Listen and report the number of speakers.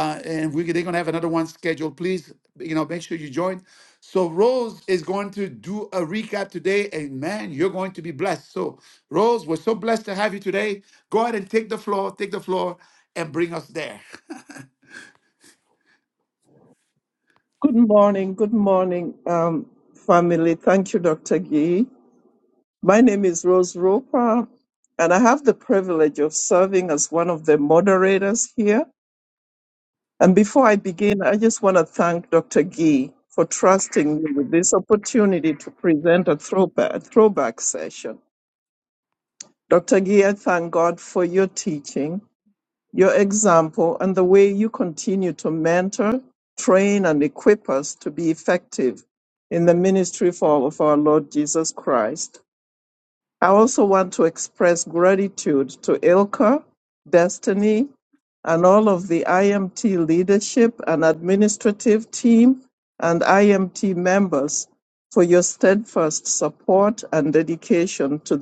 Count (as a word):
two